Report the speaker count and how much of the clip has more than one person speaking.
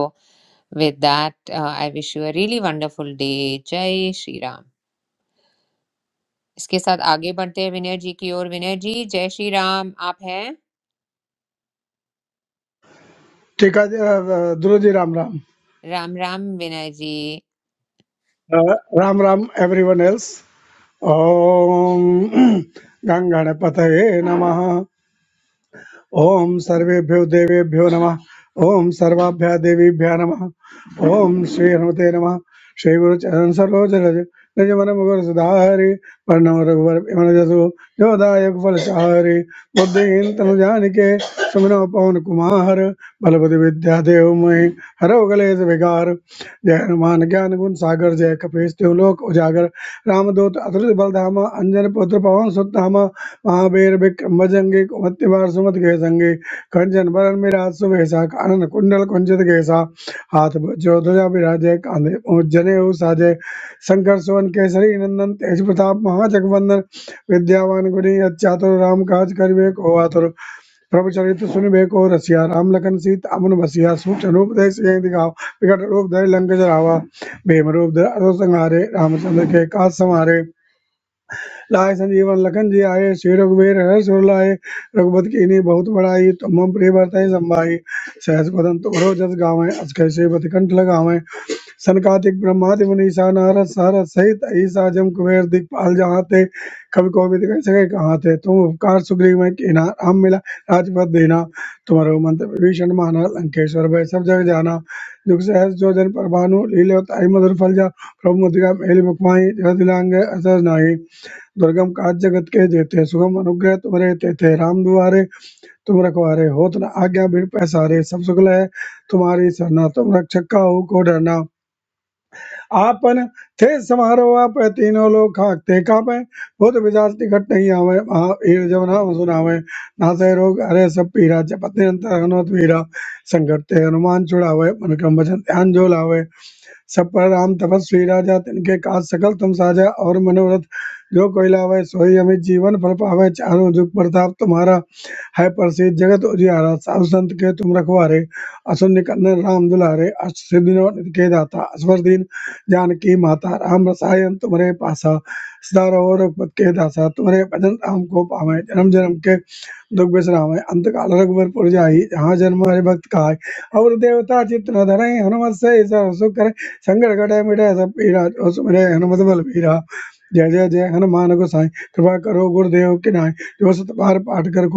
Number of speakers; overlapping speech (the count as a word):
two, no overlap